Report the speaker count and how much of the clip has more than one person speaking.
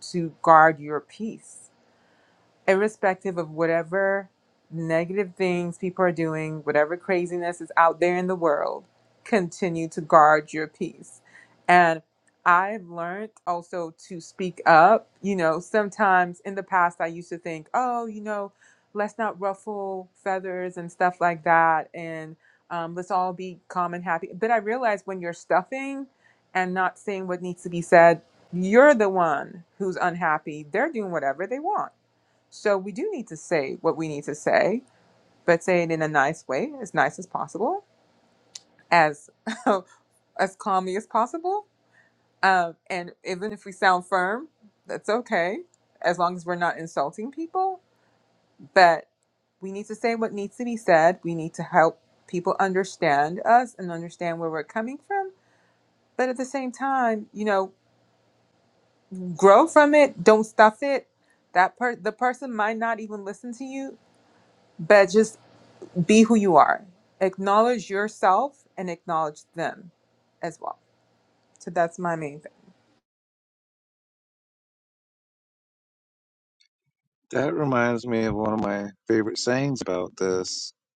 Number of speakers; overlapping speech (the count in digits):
2, no overlap